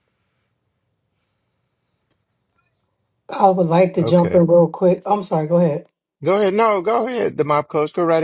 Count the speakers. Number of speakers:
2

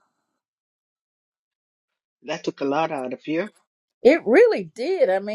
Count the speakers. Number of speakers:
2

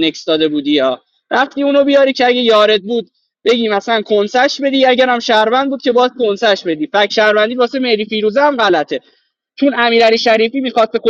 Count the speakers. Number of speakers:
1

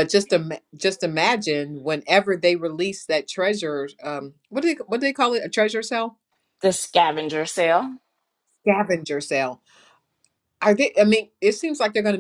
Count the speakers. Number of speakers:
2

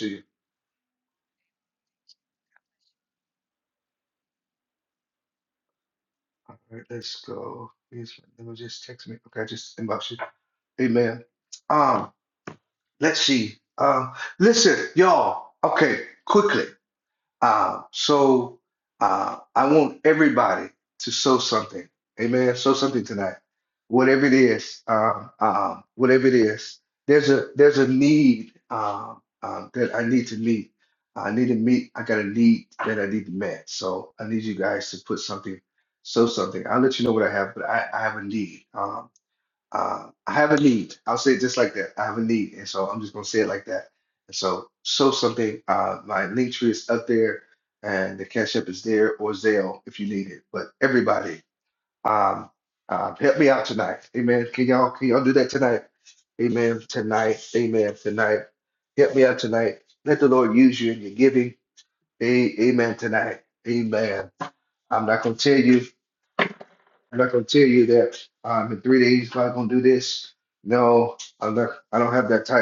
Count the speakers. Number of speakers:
1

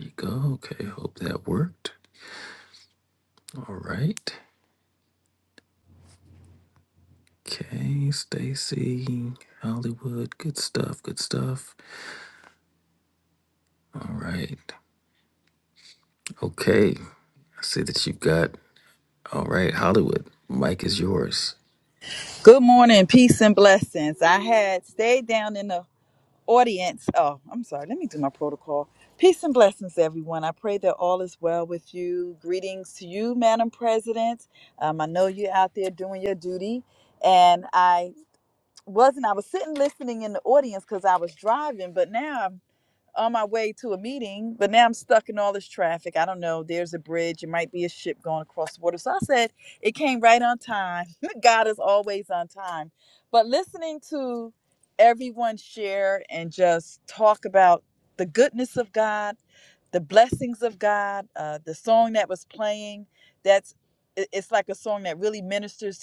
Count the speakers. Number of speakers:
2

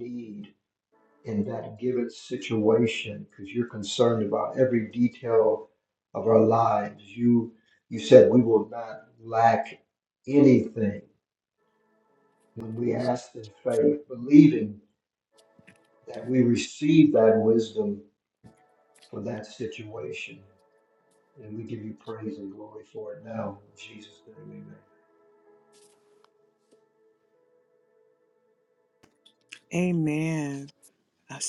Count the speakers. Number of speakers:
2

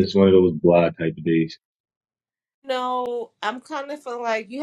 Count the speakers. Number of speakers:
2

